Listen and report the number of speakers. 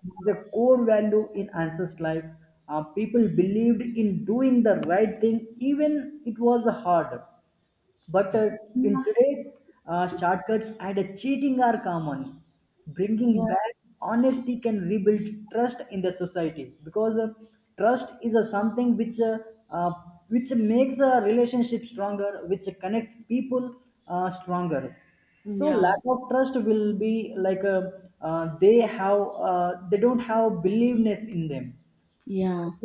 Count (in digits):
2